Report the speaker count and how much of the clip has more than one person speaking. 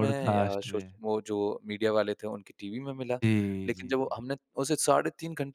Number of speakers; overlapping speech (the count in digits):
2, about 20%